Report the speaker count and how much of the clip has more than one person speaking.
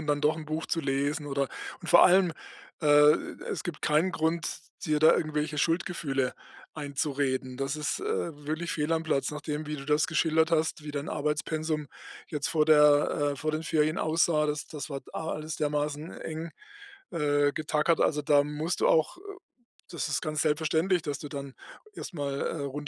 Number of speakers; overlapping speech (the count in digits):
1, no overlap